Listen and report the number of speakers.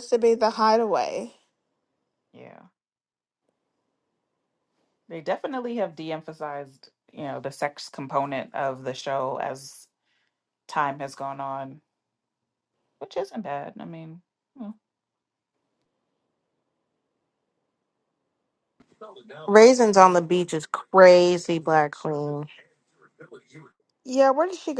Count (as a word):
three